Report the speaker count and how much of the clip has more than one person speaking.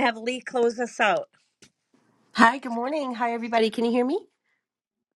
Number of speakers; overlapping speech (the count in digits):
2, no overlap